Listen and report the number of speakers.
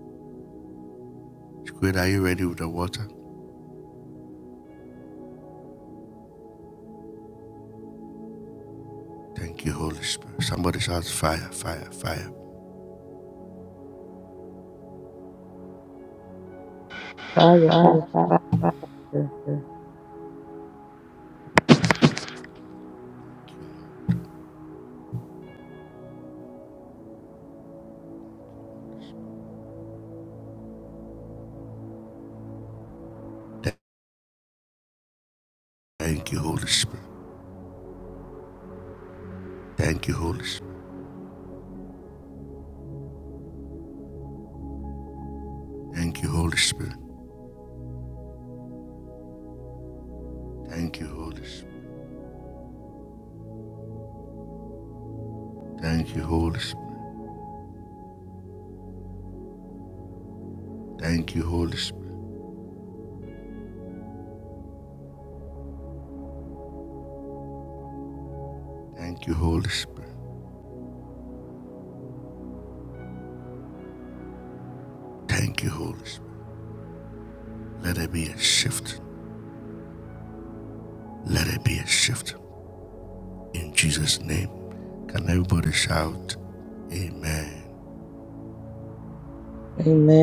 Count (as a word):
two